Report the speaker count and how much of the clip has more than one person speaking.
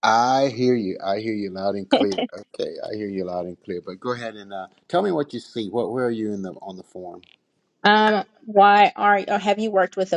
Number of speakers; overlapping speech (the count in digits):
2, no overlap